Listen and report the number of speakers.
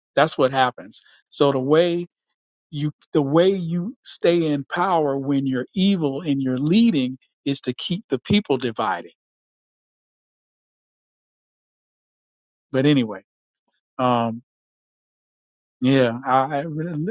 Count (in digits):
1